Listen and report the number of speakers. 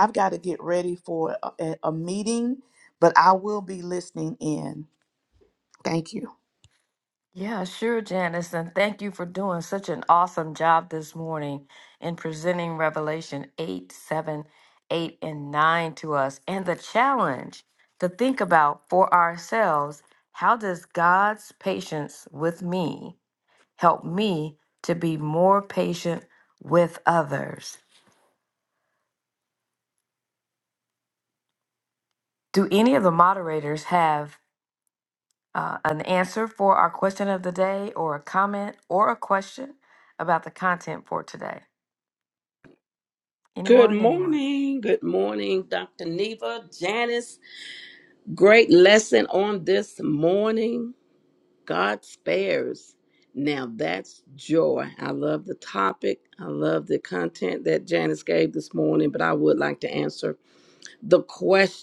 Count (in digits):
3